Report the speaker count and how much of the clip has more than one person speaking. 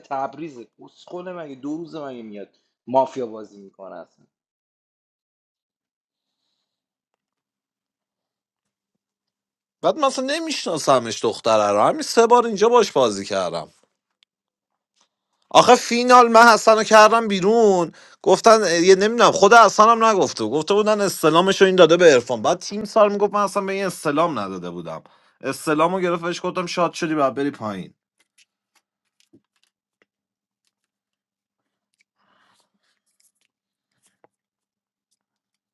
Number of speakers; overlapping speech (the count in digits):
2, no overlap